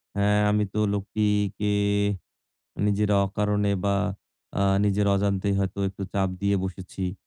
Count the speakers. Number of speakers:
one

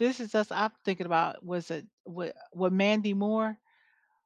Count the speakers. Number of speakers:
one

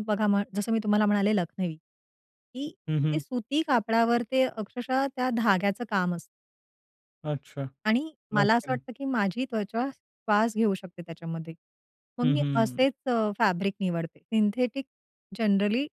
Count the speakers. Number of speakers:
two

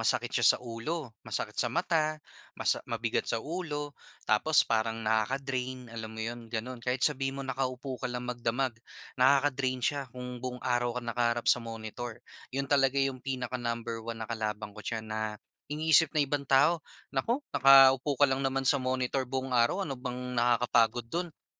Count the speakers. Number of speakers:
one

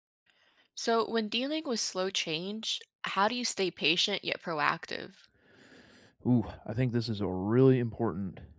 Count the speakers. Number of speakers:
two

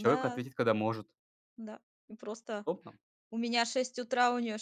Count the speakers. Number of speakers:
two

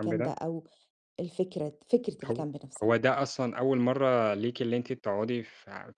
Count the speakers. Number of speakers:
two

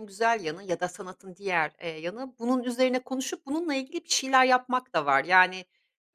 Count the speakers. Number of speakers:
one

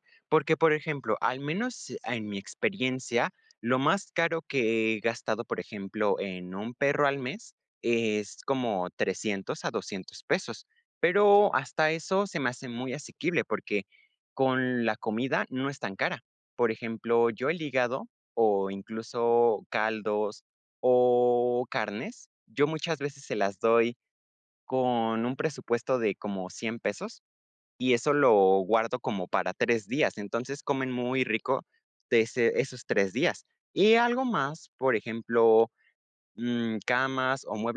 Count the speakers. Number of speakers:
one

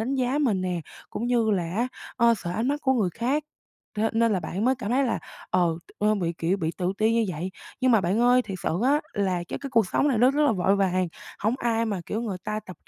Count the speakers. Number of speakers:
one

